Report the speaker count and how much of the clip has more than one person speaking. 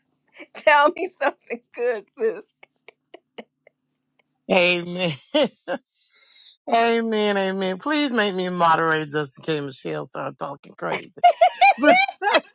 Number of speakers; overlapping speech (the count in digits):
2, no overlap